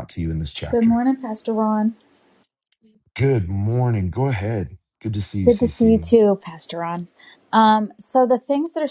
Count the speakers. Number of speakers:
two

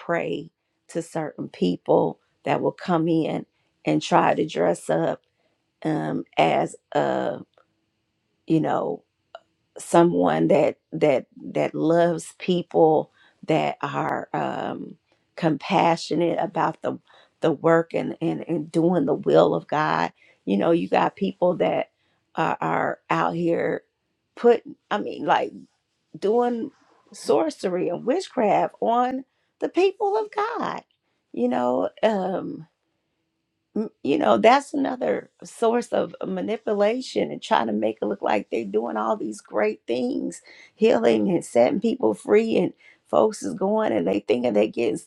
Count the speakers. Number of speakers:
one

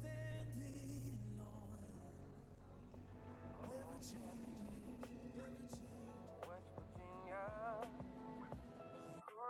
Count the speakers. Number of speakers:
zero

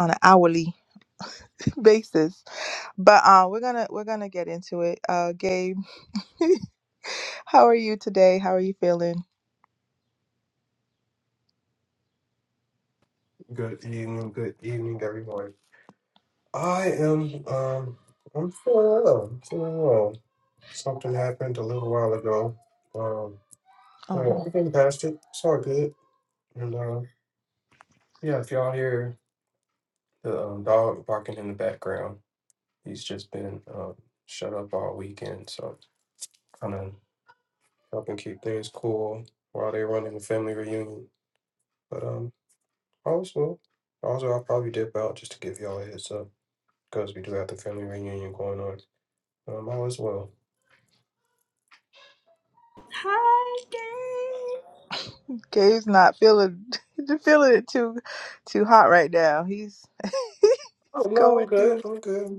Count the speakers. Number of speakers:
three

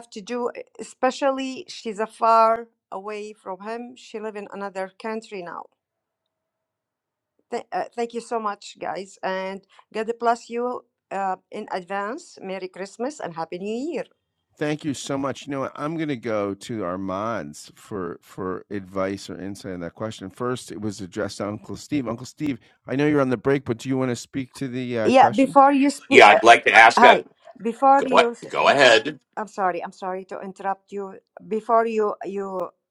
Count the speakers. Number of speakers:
three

